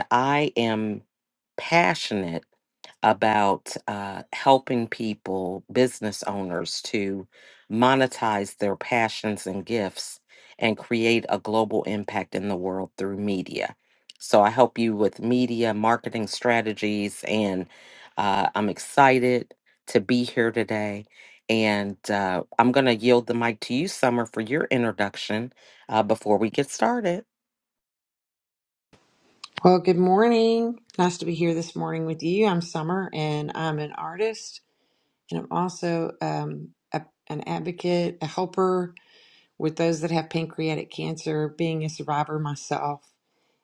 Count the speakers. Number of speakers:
2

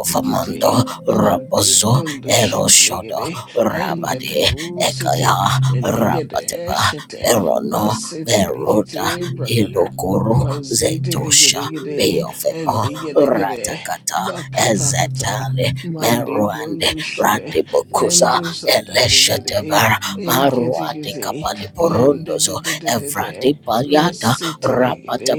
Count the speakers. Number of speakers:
2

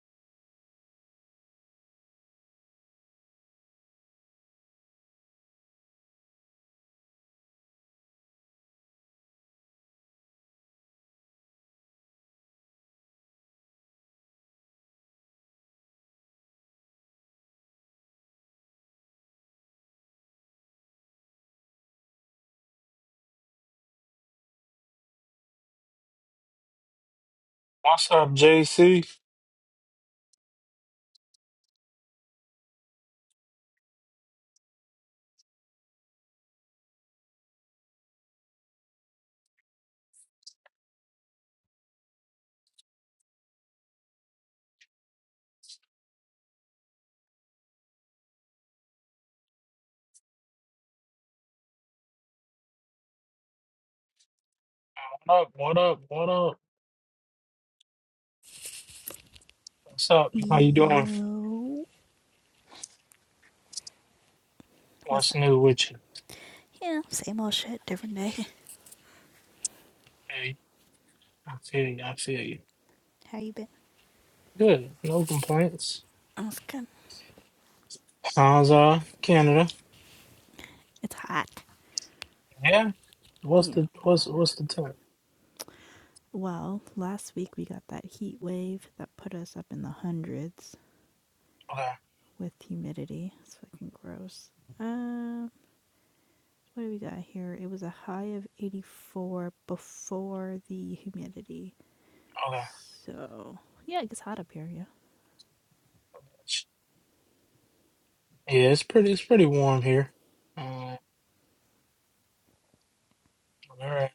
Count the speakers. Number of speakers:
2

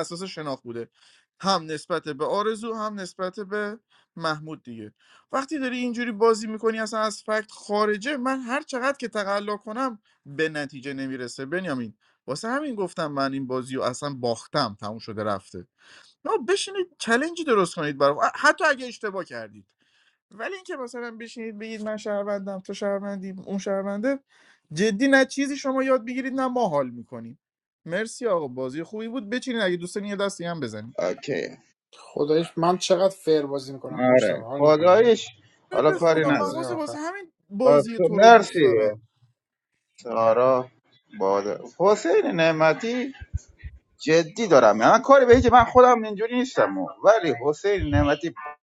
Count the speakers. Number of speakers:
3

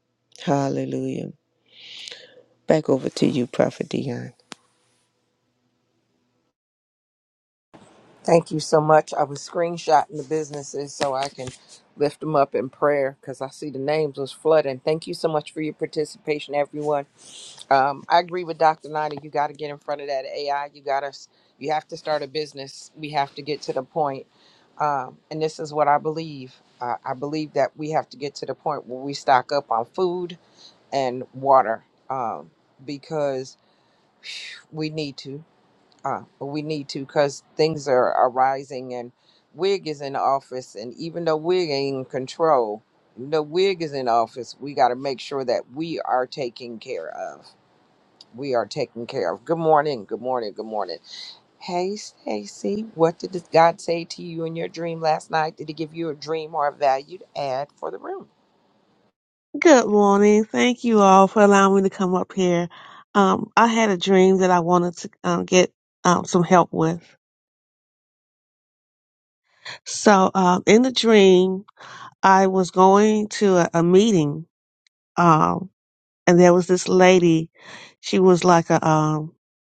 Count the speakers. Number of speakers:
3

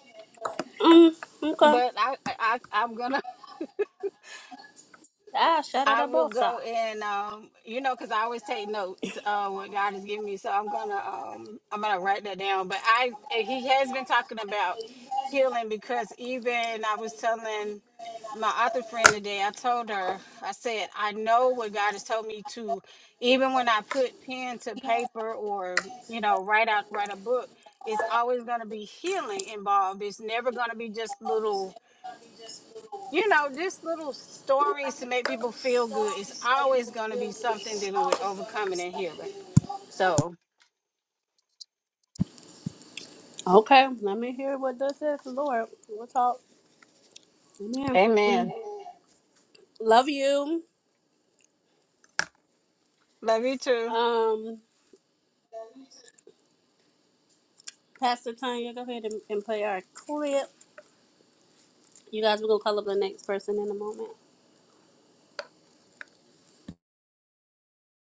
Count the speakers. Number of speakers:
2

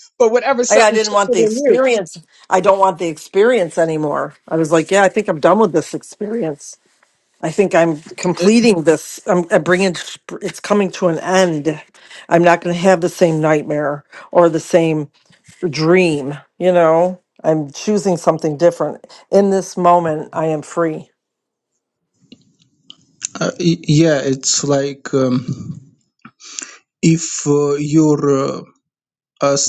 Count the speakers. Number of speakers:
3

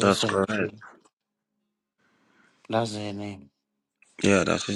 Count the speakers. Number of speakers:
2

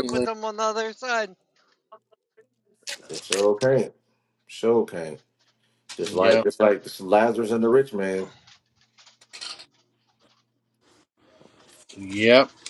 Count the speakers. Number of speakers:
3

